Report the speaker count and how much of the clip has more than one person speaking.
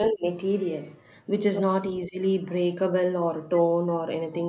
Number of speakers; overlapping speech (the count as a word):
one, no overlap